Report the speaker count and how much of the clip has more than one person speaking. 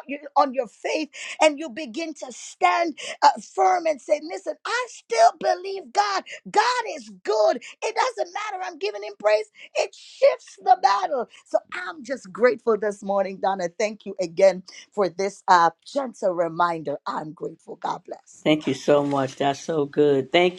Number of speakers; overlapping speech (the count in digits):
2, no overlap